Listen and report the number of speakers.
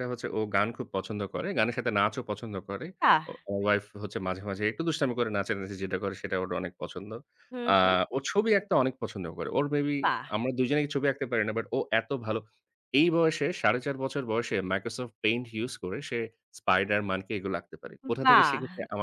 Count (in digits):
2